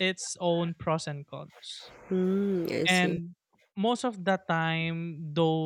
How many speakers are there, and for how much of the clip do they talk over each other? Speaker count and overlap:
2, about 6%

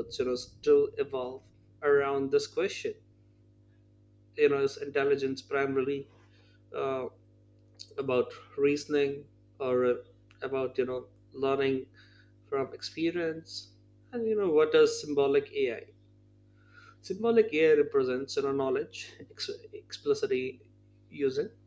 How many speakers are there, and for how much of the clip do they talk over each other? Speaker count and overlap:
1, no overlap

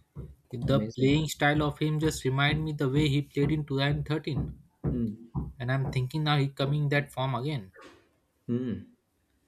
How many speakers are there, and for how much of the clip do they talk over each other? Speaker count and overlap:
2, about 5%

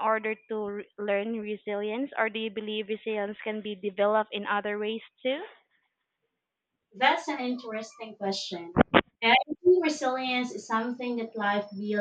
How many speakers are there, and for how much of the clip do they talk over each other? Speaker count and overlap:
2, no overlap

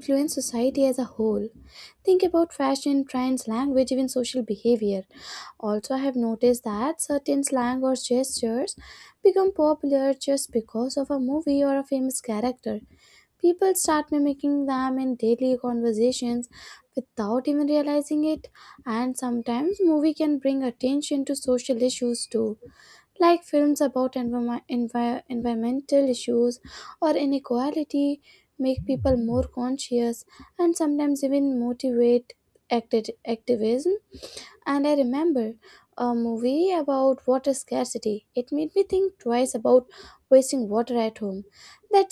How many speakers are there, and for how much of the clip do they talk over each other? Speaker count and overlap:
1, no overlap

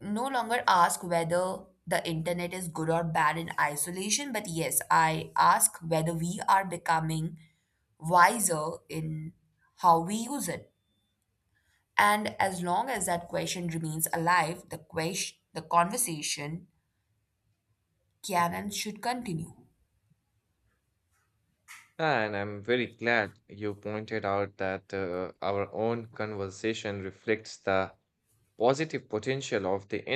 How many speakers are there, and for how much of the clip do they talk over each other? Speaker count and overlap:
2, no overlap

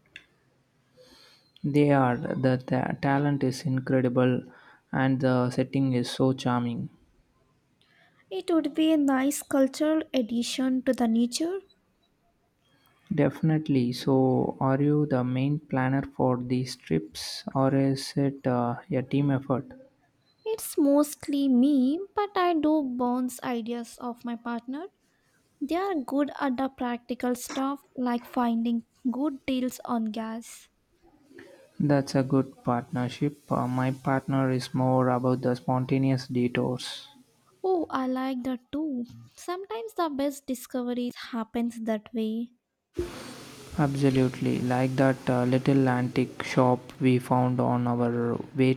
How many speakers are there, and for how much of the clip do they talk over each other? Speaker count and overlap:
2, no overlap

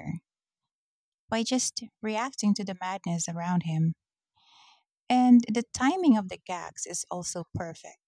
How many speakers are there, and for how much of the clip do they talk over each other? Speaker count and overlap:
1, no overlap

